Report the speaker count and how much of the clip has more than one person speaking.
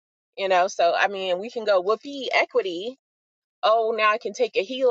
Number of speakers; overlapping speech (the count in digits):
1, no overlap